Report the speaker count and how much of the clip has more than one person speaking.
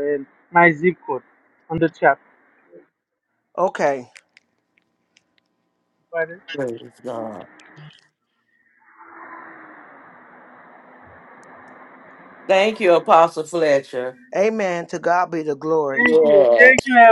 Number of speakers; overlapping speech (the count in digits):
3, about 5%